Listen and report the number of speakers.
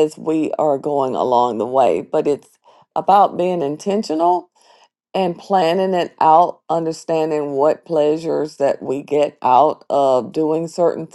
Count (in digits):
1